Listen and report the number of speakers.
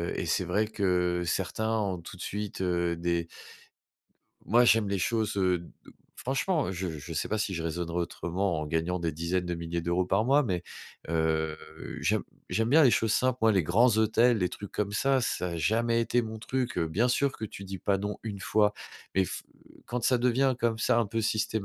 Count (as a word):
one